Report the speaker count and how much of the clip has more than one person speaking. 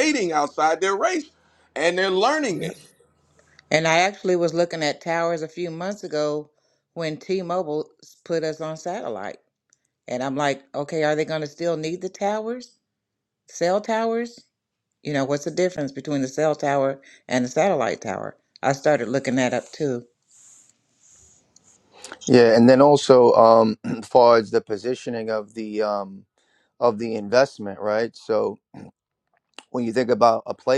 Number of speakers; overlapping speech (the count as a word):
three, no overlap